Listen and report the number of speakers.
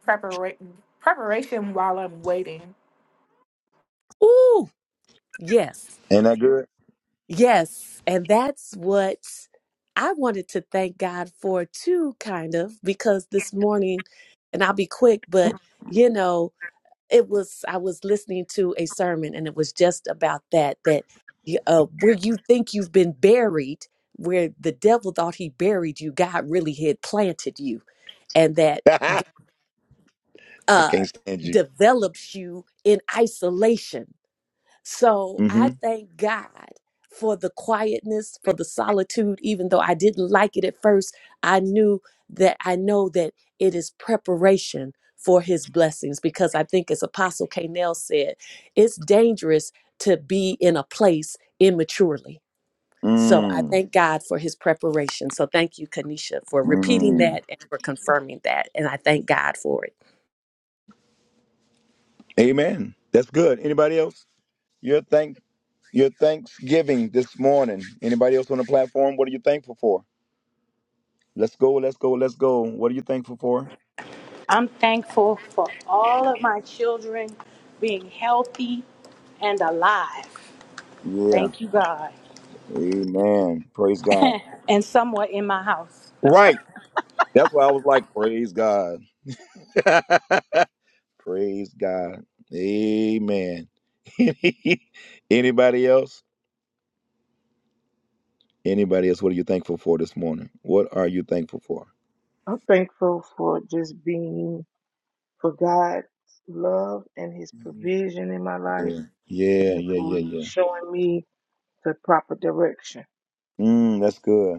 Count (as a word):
five